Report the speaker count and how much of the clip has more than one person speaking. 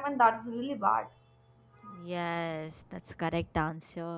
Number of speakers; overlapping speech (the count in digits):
2, no overlap